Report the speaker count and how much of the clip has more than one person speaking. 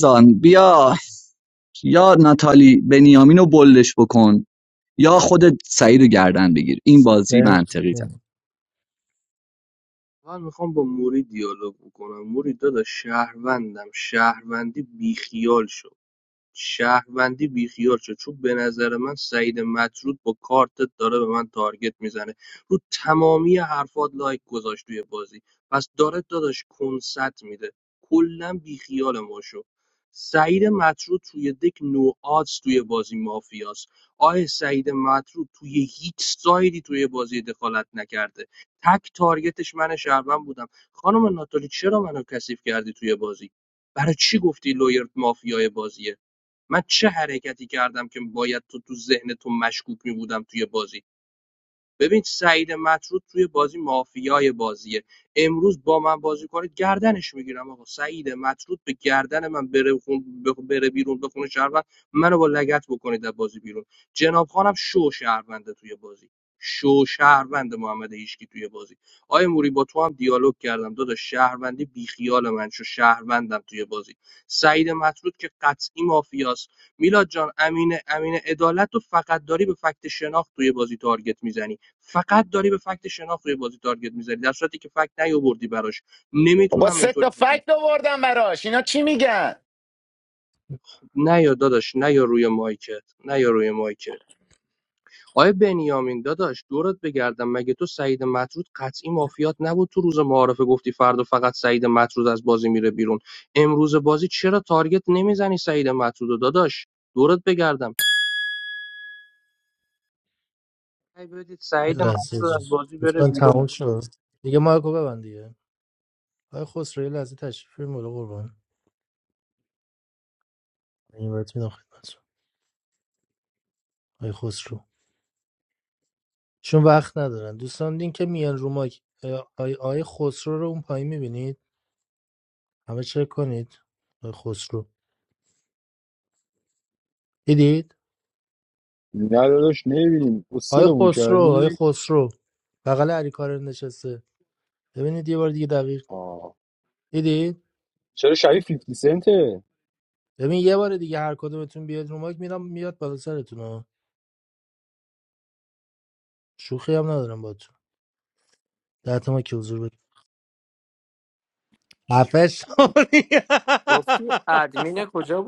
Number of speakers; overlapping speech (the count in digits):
6, about 2%